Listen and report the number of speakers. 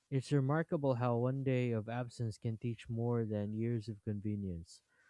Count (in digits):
1